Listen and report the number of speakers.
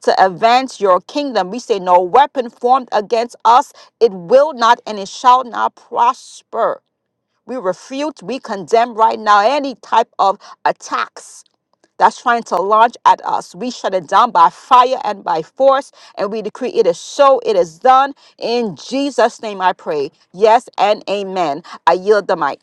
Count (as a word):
one